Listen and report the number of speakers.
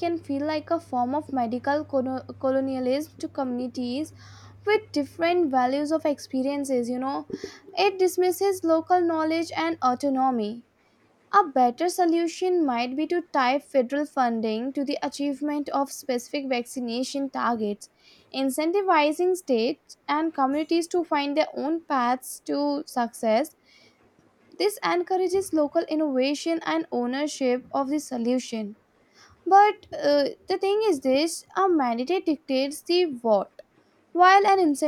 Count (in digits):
1